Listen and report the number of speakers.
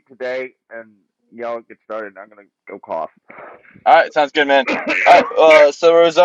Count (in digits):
2